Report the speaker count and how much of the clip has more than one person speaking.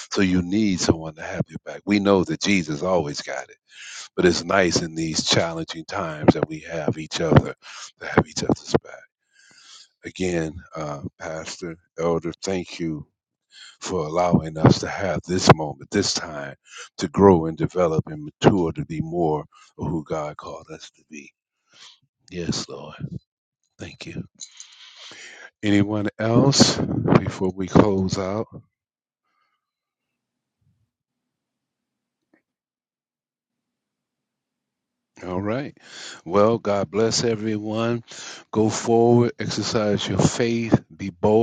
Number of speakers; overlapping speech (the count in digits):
1, no overlap